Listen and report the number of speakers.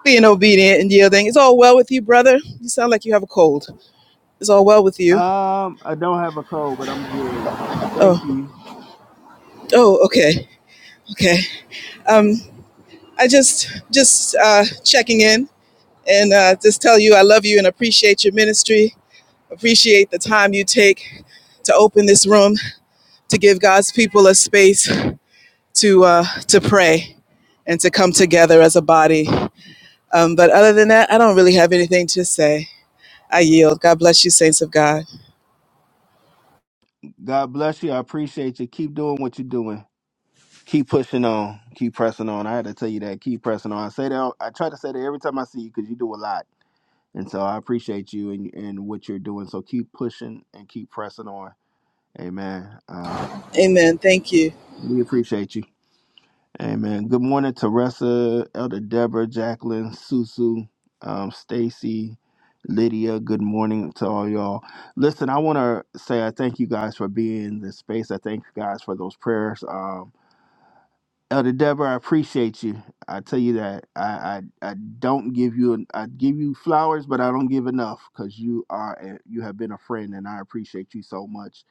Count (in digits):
2